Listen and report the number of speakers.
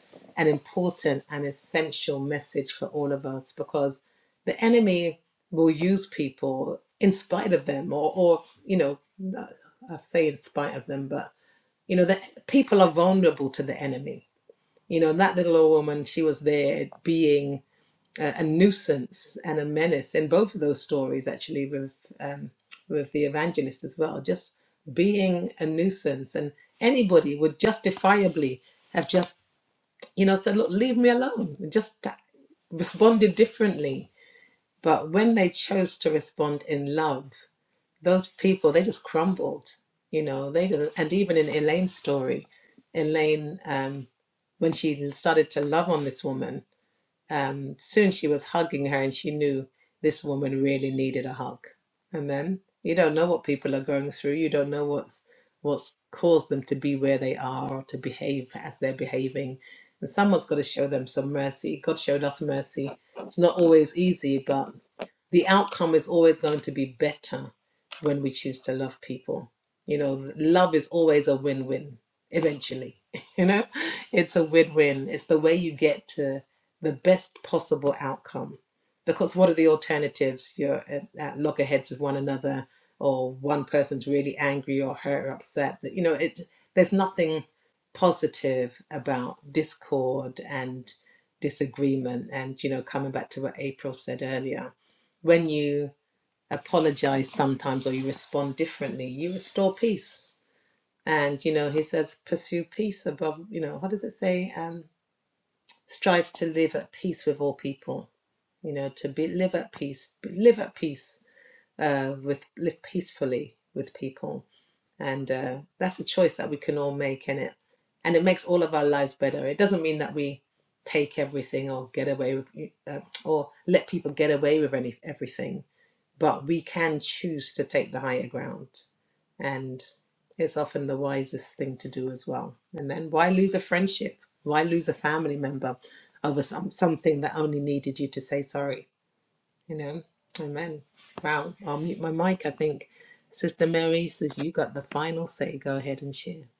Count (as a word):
one